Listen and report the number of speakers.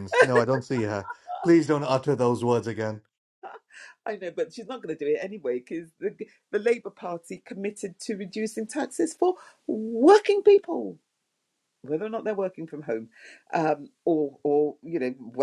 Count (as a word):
two